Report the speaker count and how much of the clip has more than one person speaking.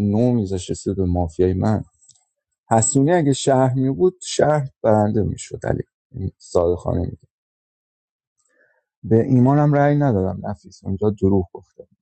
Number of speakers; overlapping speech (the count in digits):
1, no overlap